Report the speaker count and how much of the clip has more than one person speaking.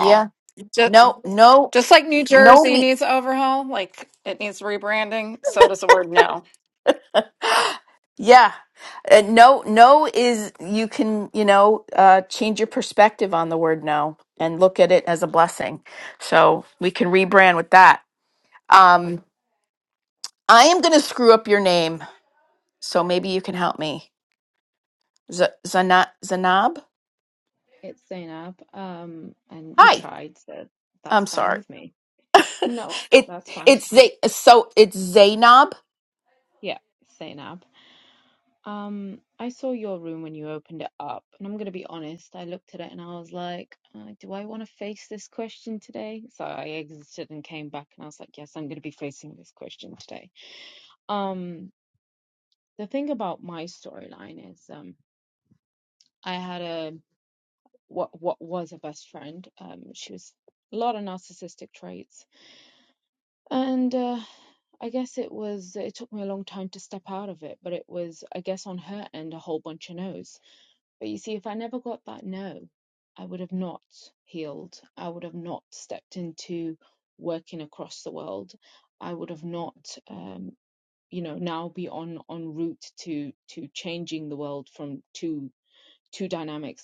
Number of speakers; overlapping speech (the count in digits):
3, about 2%